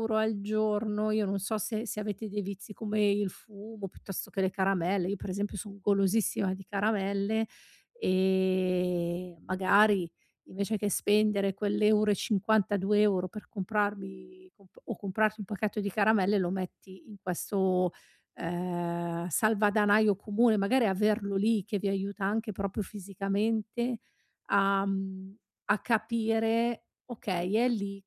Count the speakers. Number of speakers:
one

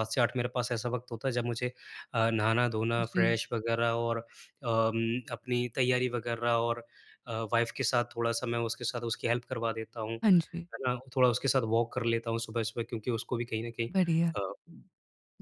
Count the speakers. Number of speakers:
two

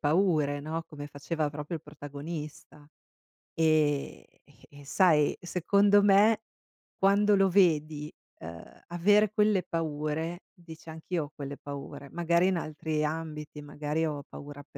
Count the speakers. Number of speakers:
one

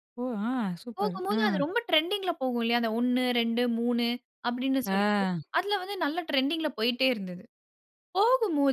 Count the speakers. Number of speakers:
two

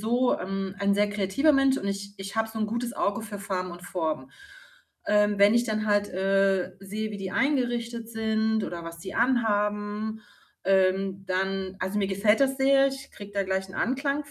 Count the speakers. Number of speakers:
one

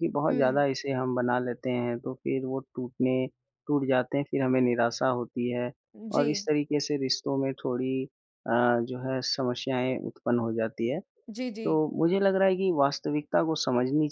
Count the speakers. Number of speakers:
two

